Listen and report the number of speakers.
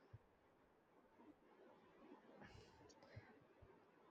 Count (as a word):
zero